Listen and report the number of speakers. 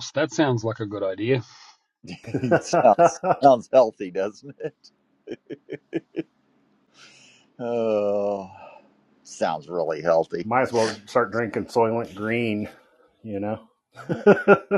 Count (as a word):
three